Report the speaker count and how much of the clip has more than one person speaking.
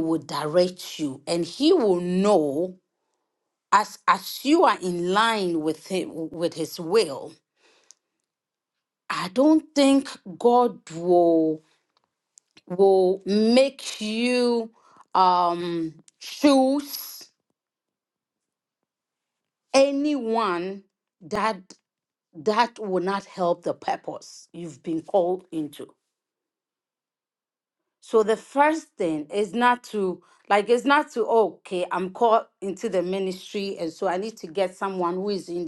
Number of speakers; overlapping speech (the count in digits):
1, no overlap